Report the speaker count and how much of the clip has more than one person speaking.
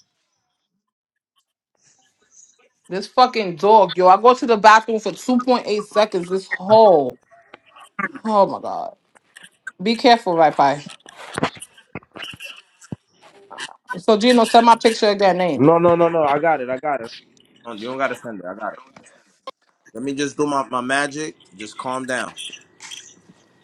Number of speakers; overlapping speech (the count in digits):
2, under 1%